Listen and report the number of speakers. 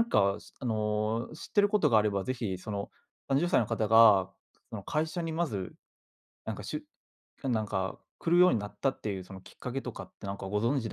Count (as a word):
one